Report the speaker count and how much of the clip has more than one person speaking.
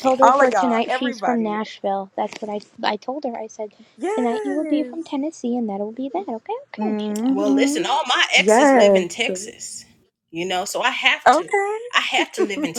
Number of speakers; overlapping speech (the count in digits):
3, about 35%